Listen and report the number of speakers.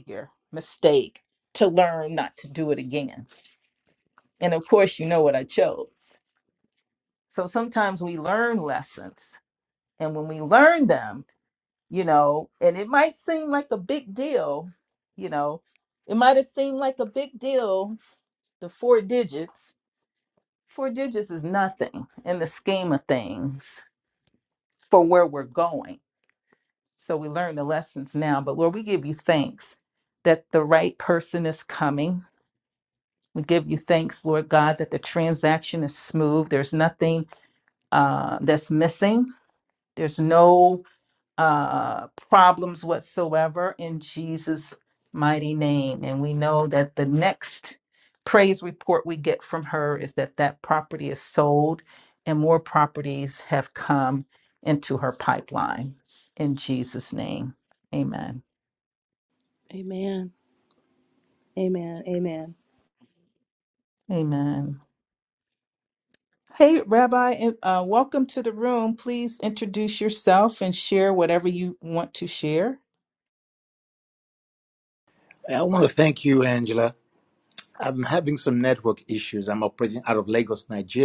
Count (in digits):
3